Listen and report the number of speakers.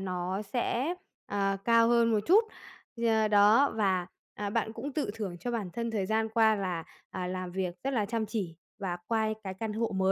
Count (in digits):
1